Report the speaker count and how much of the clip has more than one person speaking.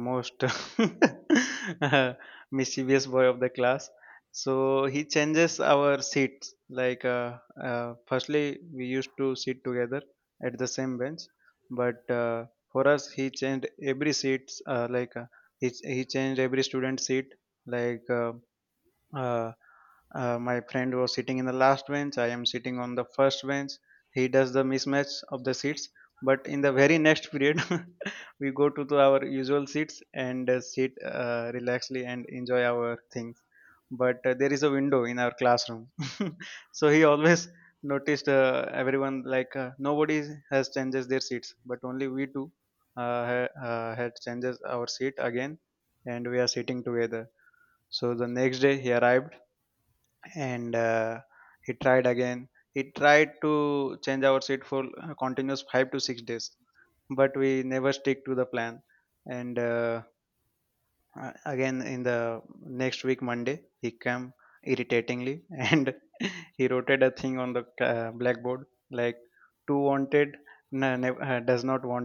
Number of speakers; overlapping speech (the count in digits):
1, no overlap